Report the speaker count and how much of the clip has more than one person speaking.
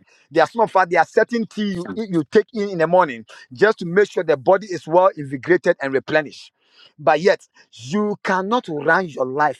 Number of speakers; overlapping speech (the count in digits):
1, no overlap